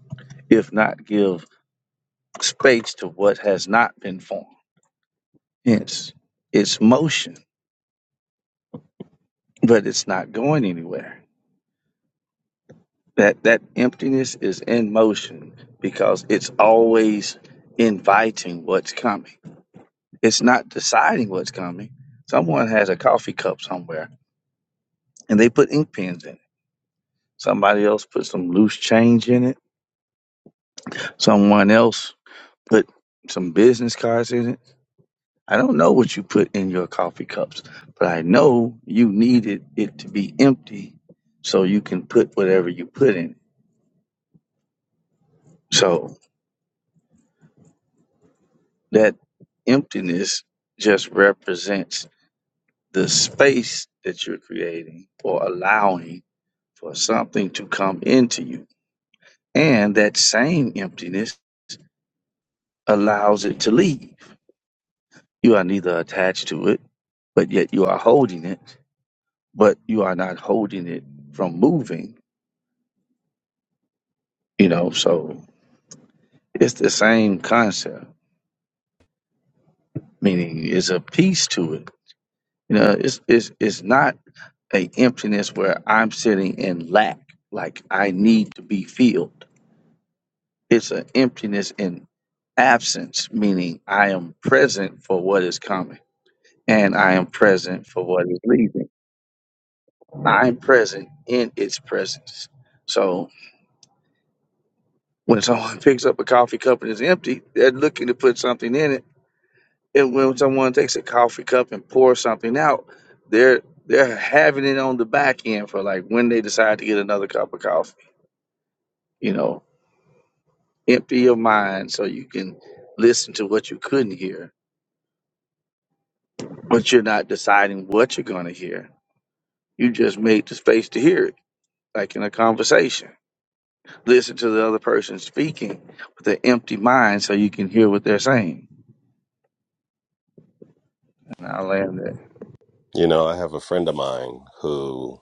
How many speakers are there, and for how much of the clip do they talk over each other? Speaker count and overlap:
2, no overlap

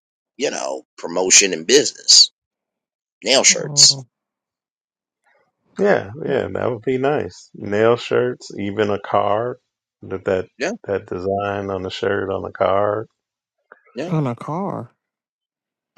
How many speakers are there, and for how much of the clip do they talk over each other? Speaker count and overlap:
3, about 4%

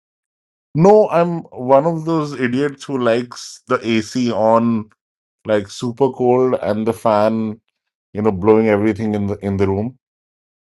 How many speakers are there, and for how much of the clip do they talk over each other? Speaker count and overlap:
1, no overlap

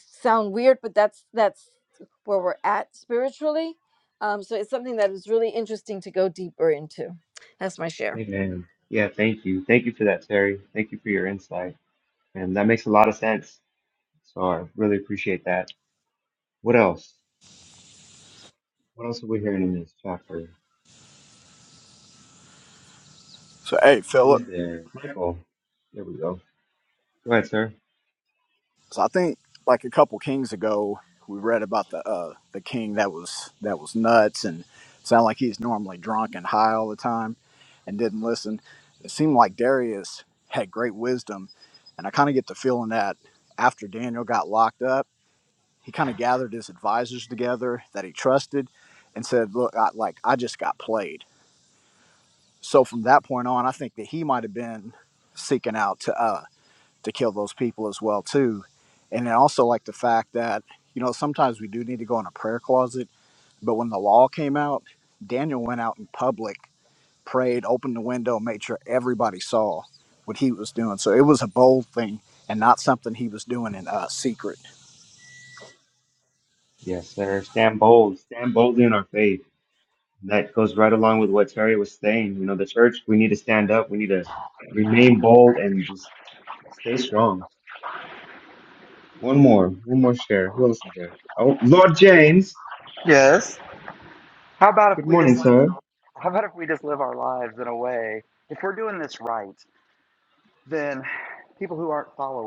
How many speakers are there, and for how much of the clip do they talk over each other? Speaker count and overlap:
4, about 1%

